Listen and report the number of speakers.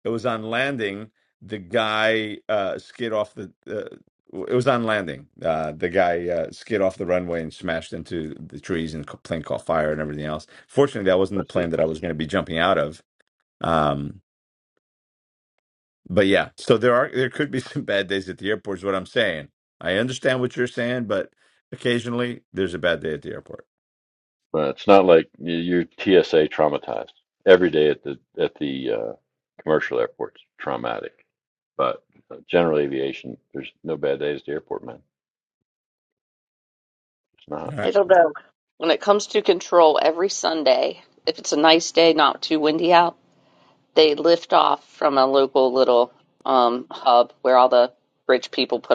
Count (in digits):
3